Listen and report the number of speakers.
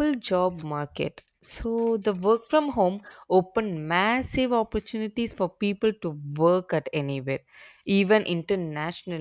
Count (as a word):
one